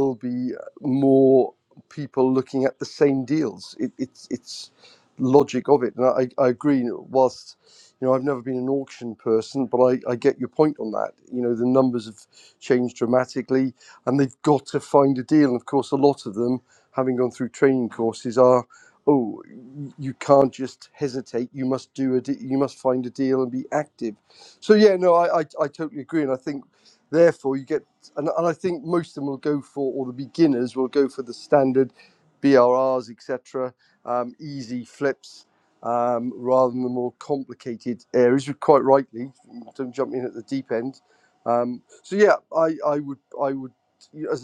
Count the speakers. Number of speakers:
one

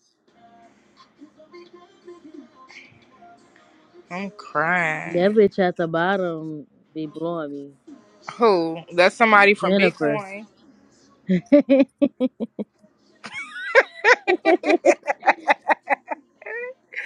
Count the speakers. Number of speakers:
two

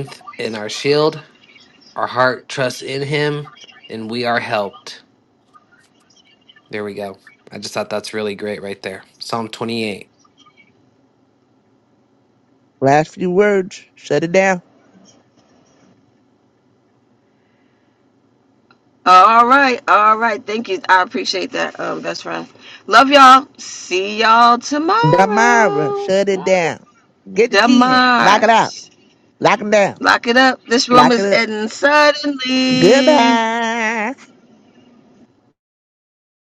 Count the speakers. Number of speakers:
three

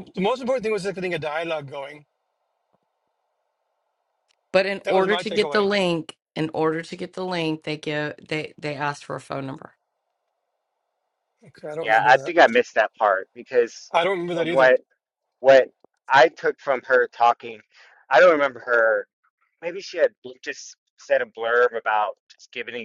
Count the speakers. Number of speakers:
three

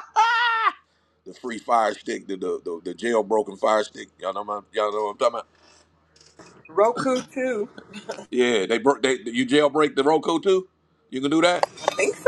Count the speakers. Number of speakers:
two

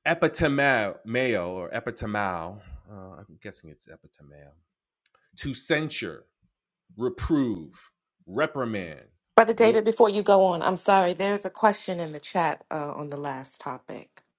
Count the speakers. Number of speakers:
two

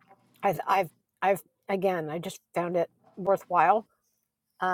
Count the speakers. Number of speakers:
one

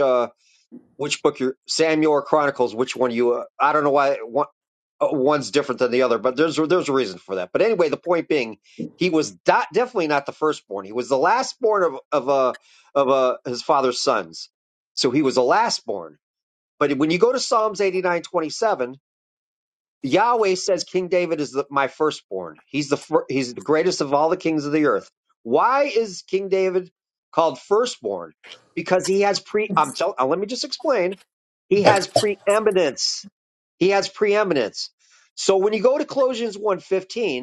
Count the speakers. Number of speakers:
one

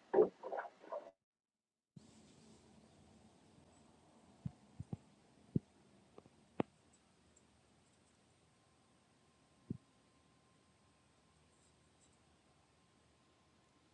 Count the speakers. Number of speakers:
zero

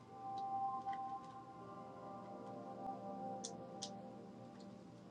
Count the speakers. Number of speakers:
zero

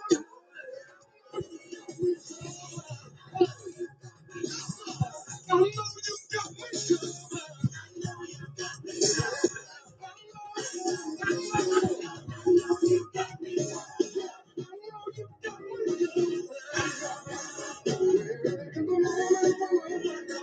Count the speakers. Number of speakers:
zero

